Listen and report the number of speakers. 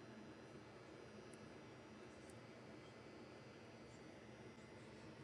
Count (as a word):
zero